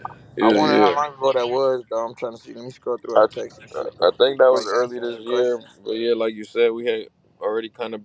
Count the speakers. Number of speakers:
two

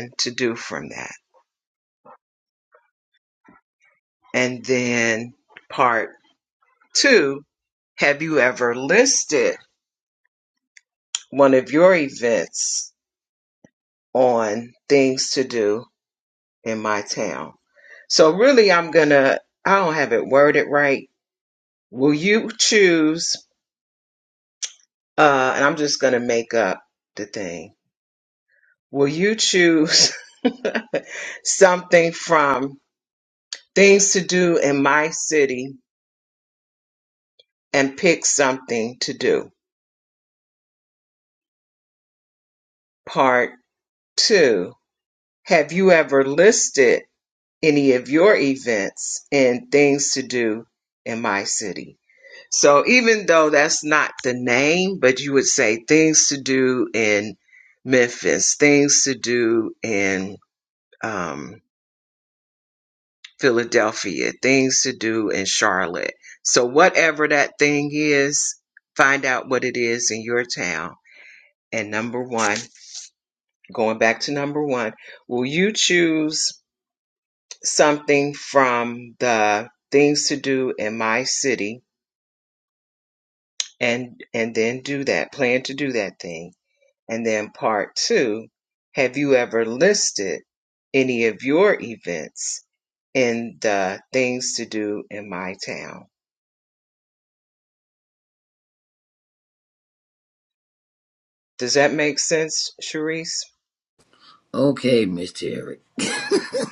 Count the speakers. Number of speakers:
two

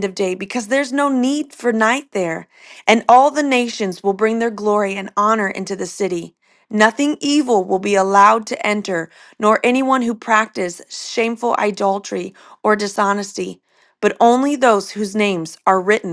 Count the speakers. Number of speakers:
one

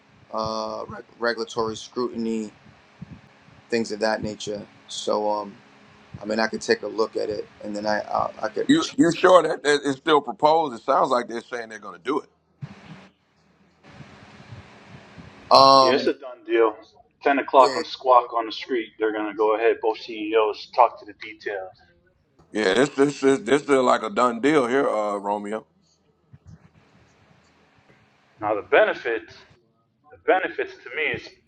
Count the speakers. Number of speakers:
three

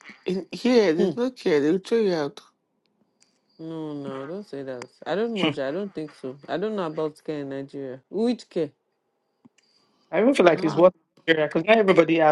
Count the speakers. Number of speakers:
three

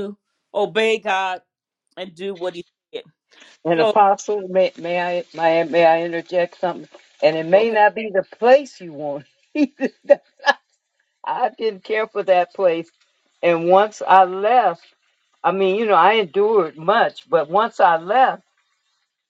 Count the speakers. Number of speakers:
two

